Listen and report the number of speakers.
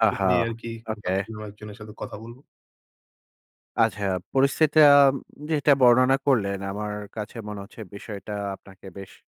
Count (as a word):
two